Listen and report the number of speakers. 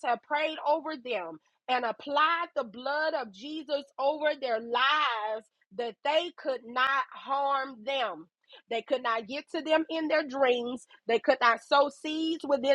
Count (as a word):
one